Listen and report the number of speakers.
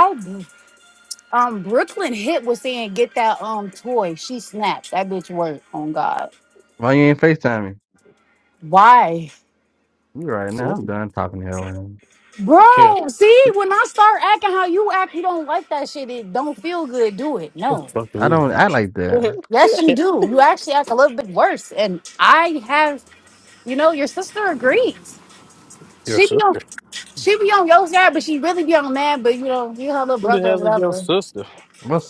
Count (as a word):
three